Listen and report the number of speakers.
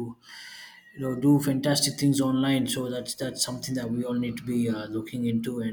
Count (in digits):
1